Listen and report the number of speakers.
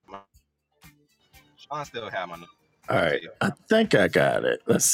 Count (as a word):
two